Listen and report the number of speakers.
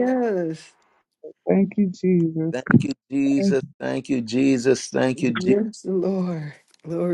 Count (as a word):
three